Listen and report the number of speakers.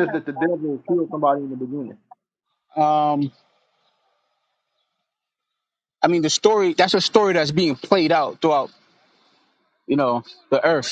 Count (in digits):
2